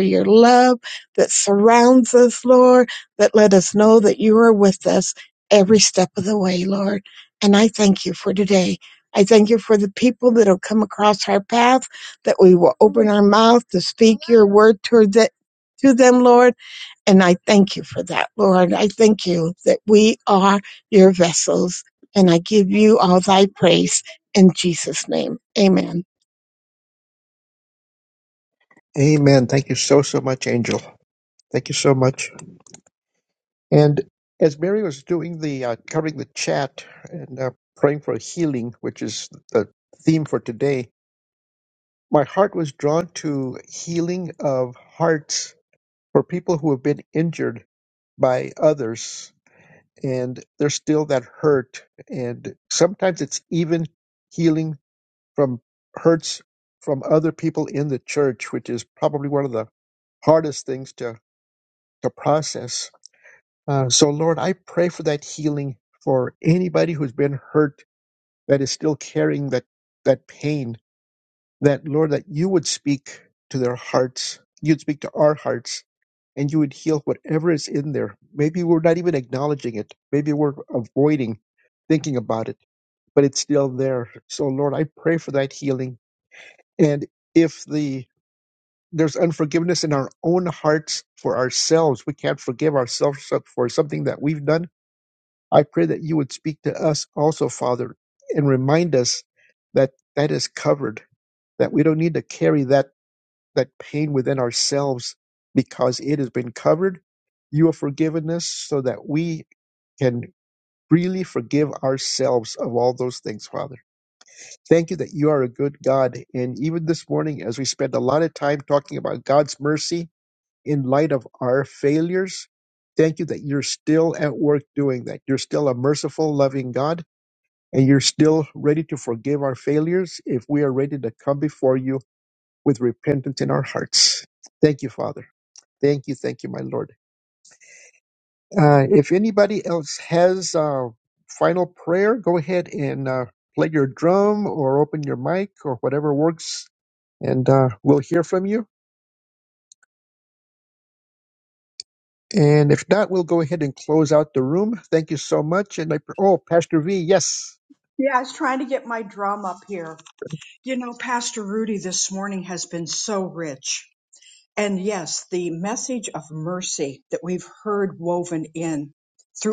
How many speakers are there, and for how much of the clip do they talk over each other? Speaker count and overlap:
3, no overlap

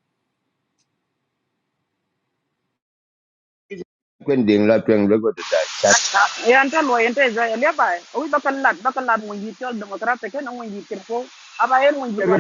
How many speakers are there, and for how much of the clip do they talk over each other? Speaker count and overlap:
2, no overlap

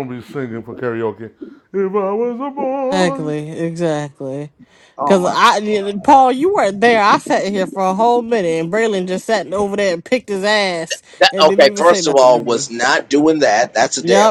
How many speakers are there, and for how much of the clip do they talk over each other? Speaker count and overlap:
3, about 16%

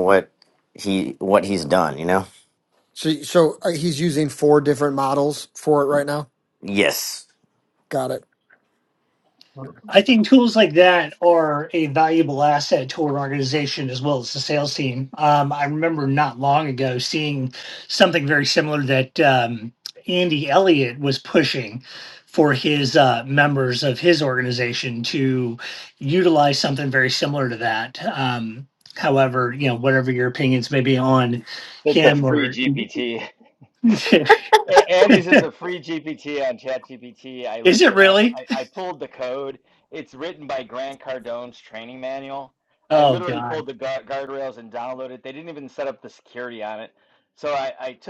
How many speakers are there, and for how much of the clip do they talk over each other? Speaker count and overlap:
4, about 4%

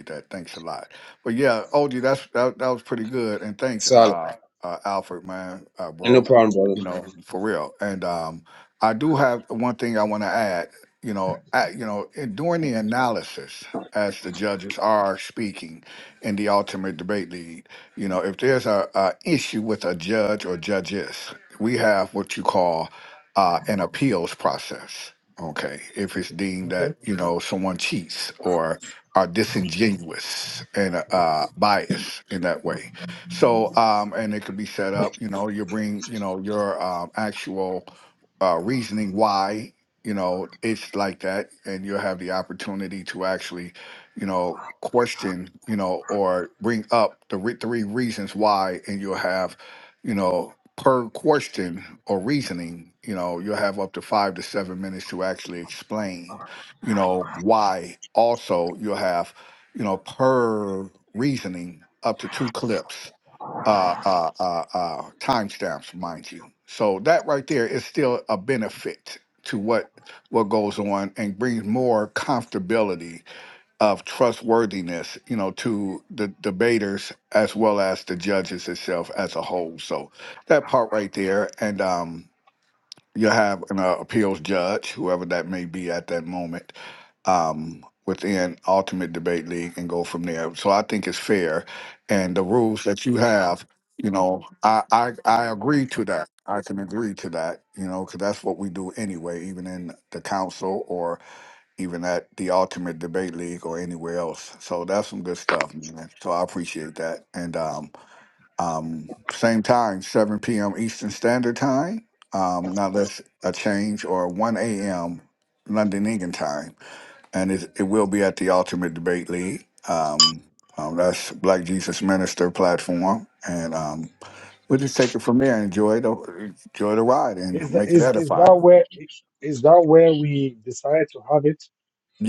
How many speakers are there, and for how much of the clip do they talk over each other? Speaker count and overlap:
3, about 1%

